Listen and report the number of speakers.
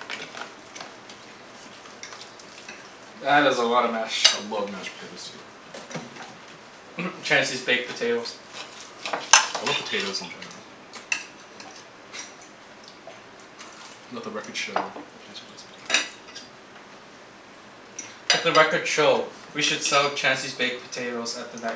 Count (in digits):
2